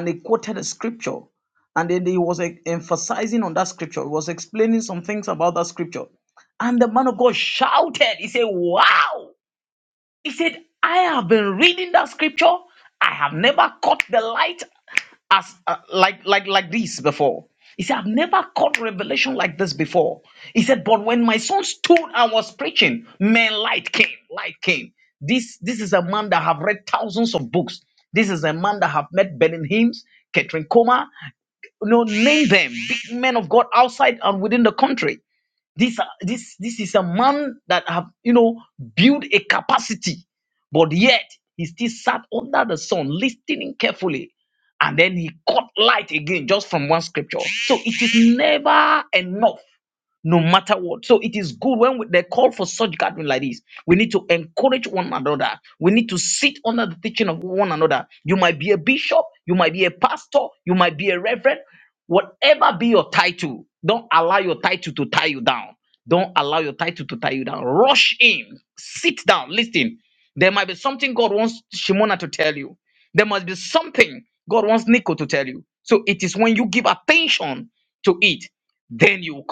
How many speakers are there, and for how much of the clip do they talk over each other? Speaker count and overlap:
one, no overlap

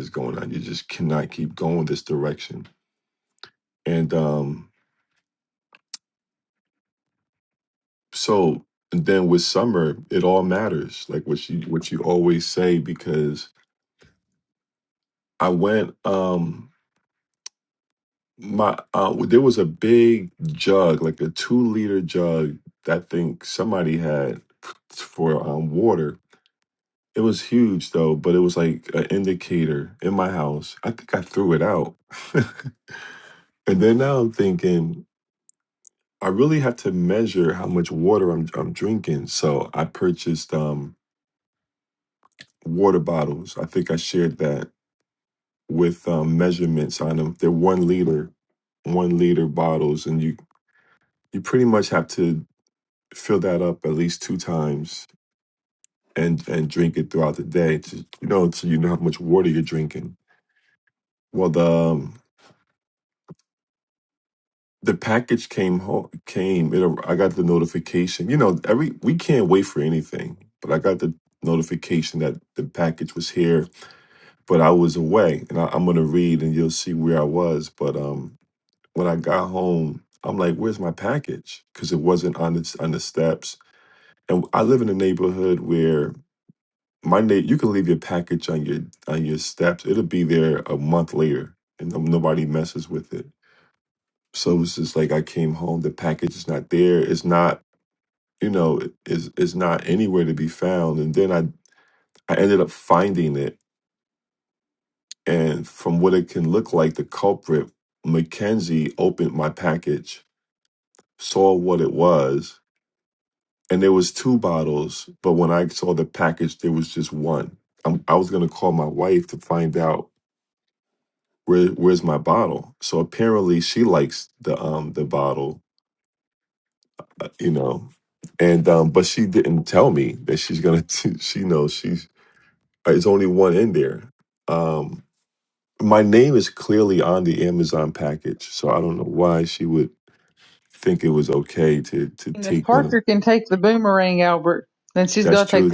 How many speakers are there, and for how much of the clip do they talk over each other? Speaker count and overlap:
two, about 1%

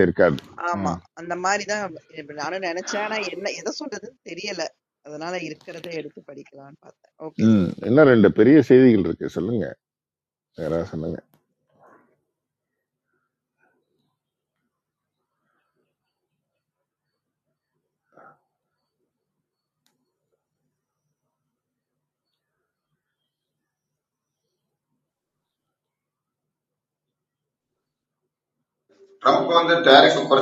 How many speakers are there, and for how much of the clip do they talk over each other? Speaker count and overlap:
three, about 1%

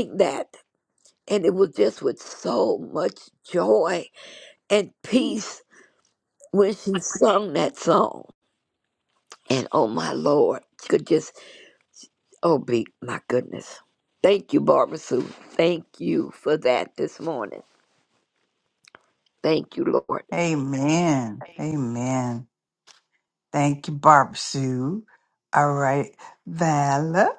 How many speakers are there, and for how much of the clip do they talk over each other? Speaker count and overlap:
two, no overlap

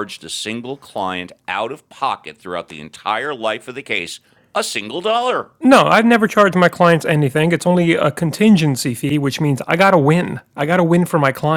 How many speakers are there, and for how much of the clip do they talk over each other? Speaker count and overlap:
two, no overlap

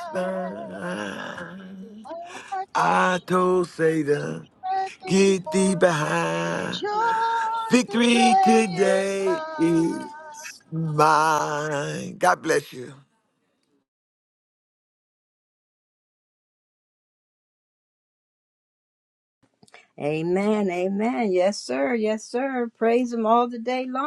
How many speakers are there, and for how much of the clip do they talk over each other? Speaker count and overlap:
three, about 18%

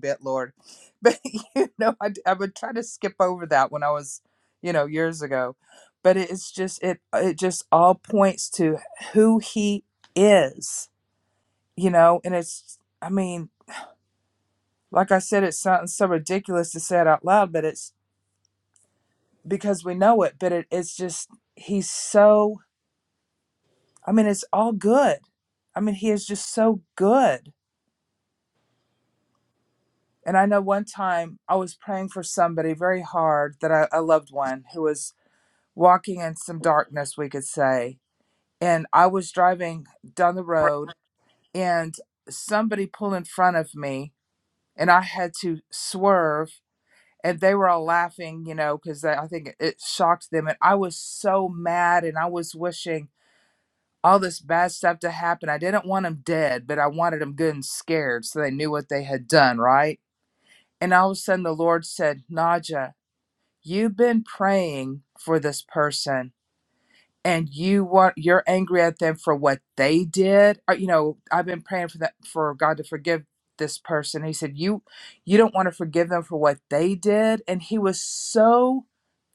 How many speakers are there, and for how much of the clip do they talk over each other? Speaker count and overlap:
one, no overlap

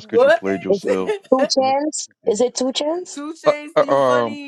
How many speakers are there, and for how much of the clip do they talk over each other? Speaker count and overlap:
three, about 30%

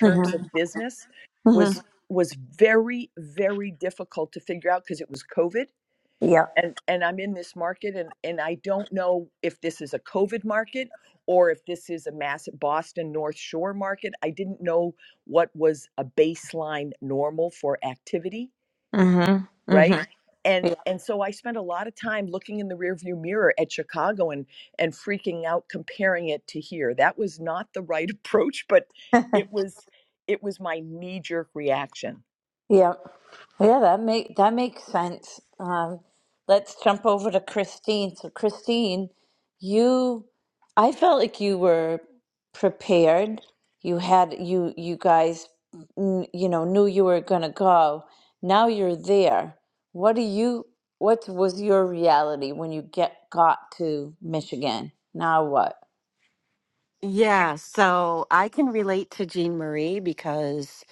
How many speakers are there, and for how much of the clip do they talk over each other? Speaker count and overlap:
three, about 1%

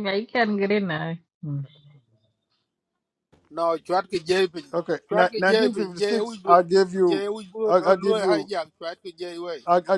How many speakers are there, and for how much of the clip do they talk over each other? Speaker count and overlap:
three, about 22%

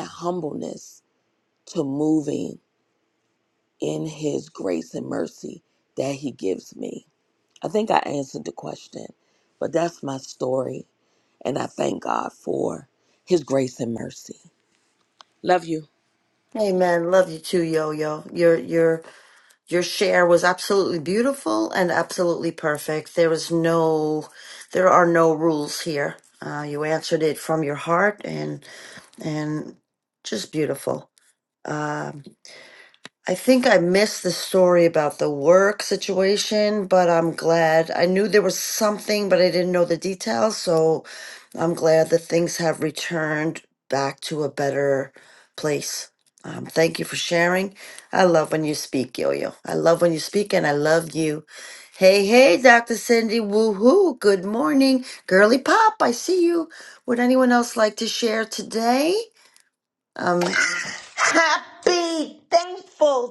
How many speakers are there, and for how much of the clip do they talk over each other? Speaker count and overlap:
three, no overlap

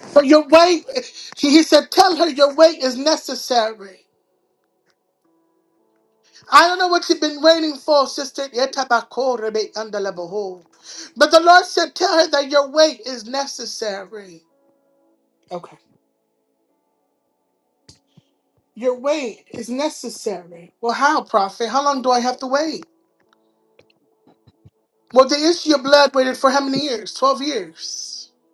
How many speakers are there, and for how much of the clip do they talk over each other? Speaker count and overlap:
one, no overlap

